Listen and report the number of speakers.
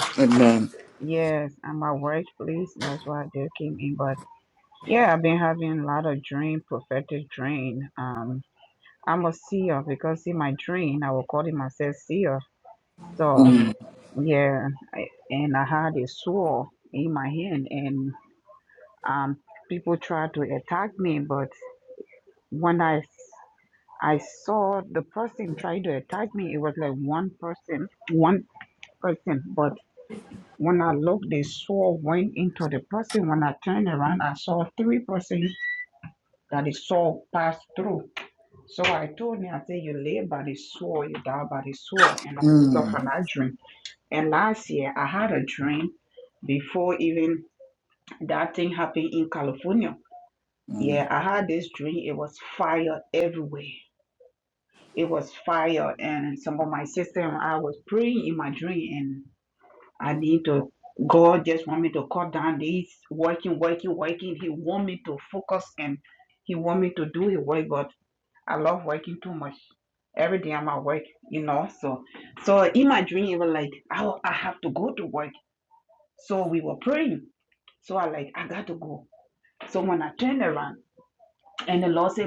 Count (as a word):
two